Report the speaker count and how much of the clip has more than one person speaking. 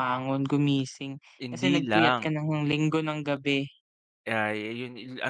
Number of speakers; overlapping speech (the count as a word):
two, about 15%